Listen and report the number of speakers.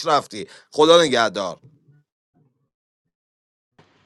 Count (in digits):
1